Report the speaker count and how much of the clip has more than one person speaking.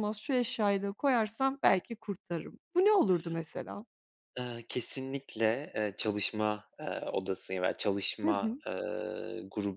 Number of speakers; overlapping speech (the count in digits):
2, about 4%